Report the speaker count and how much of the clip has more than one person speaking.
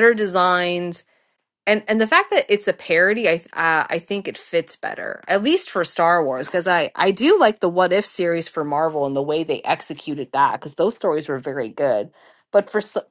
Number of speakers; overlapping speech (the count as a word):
one, no overlap